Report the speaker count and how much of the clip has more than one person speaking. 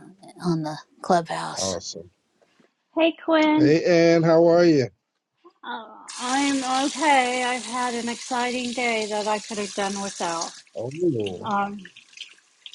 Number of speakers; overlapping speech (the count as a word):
three, about 4%